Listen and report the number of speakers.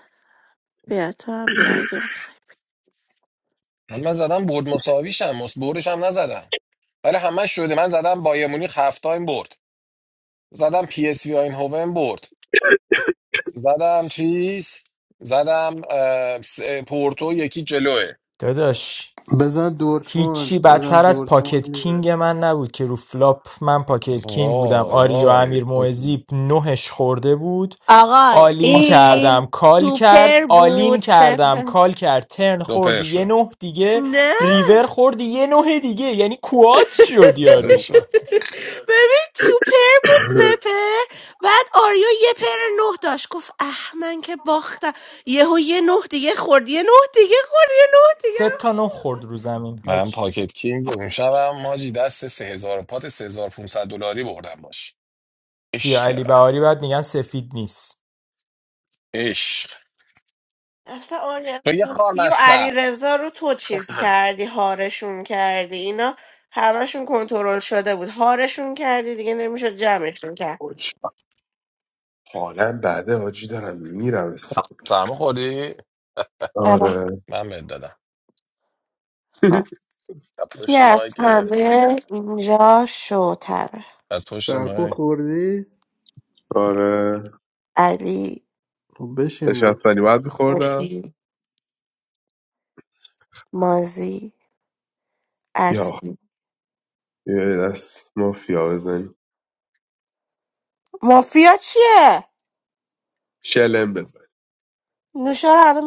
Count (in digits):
5